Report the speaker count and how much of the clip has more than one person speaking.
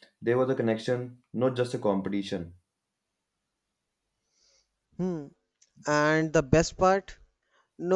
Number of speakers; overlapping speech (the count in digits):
2, no overlap